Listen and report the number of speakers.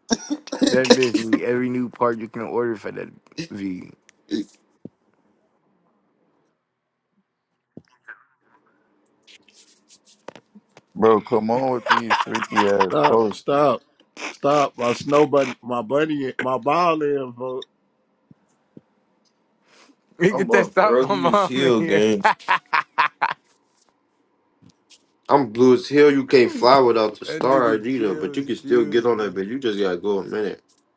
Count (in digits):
4